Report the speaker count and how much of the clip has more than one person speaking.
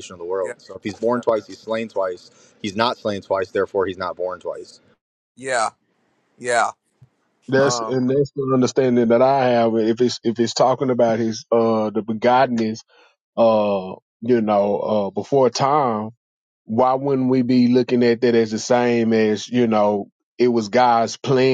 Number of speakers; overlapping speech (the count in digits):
3, about 2%